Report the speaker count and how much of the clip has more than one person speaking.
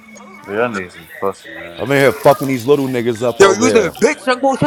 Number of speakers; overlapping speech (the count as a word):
three, about 15%